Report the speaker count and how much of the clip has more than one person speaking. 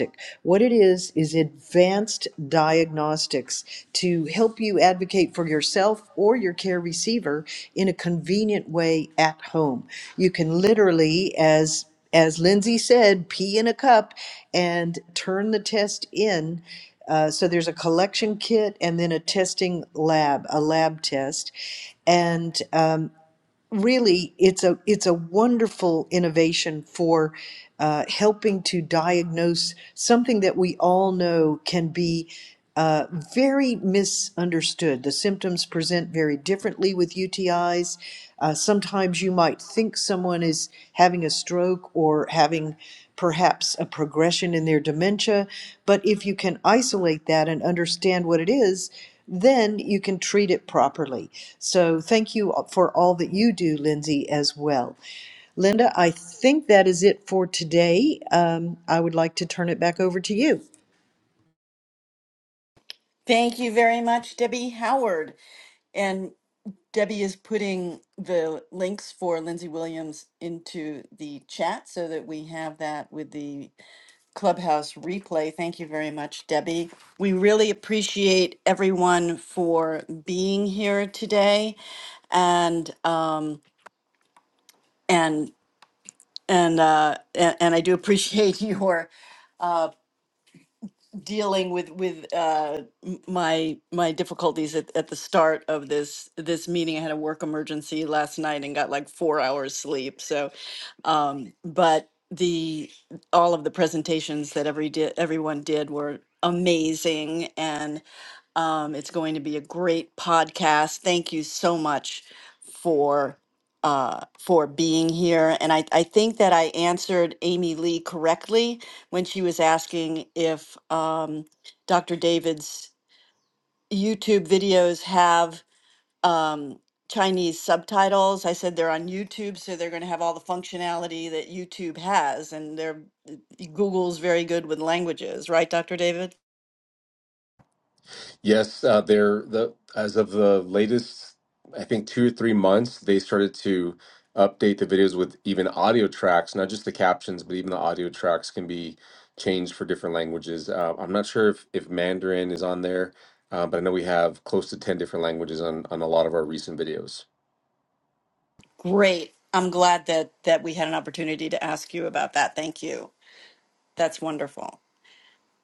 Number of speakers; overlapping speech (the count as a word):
three, no overlap